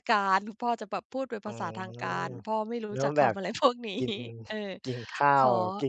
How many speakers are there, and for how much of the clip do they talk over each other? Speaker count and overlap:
2, about 16%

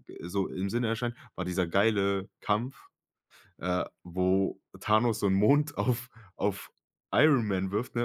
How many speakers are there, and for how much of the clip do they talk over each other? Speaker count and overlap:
1, no overlap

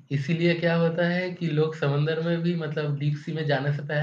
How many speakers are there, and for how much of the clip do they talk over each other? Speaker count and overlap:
1, no overlap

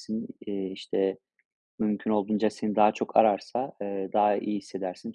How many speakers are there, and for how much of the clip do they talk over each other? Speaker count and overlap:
1, no overlap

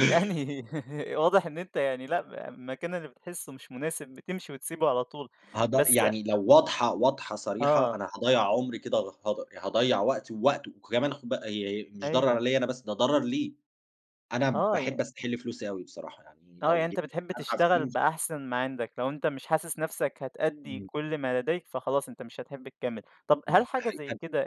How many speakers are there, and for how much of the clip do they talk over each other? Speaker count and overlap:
2, about 13%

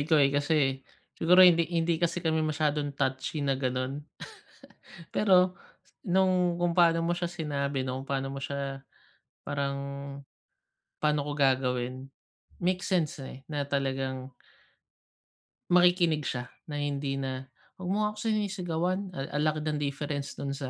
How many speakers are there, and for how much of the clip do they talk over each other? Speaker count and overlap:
1, no overlap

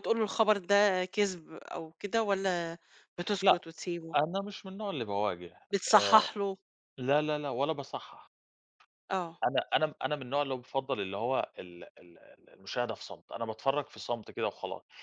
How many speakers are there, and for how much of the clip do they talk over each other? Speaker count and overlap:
2, about 5%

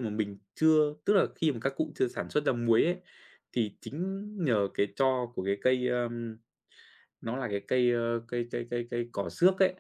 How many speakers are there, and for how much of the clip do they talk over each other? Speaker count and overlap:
1, no overlap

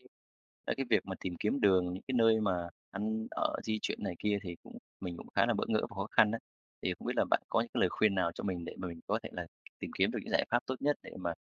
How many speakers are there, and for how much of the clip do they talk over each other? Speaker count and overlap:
1, no overlap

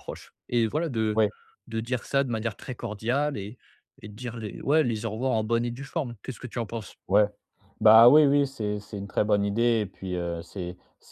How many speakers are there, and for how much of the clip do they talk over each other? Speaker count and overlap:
2, under 1%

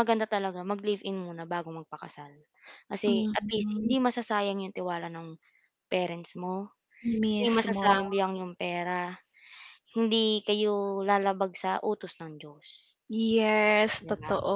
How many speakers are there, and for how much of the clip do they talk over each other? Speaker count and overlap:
2, about 12%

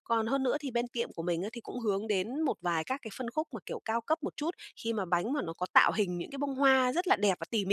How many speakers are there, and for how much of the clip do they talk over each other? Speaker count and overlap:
1, no overlap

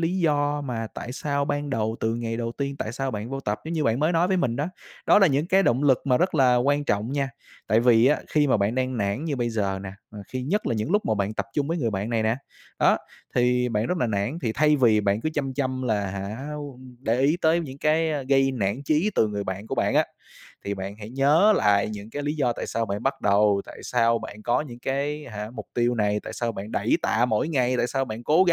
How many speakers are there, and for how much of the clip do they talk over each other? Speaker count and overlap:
1, no overlap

